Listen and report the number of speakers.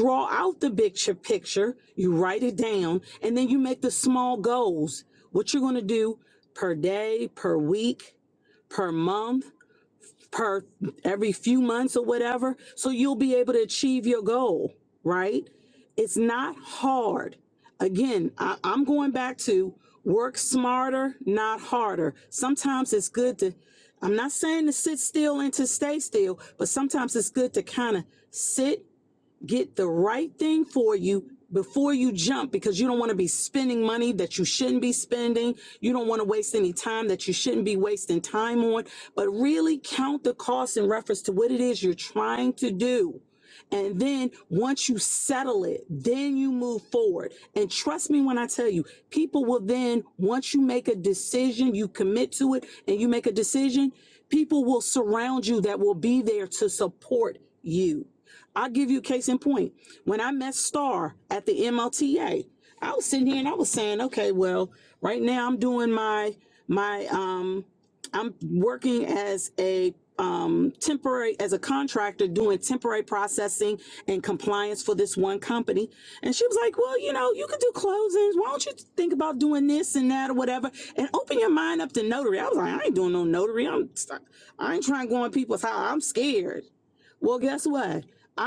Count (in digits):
1